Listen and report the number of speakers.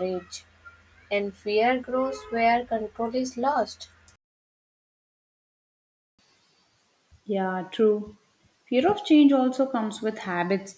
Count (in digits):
2